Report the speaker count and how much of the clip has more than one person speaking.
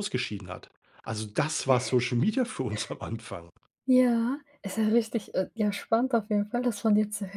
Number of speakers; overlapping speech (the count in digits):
2, no overlap